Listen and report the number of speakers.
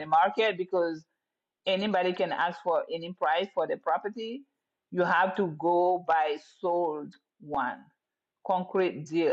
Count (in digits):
1